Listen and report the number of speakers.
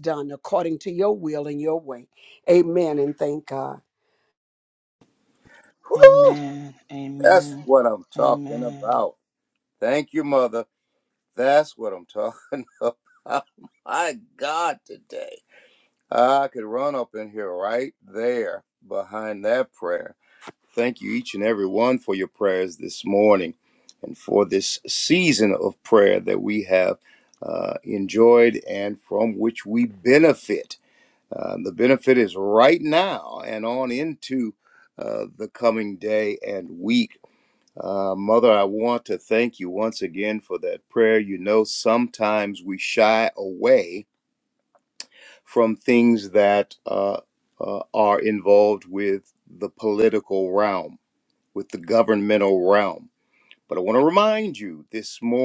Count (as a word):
two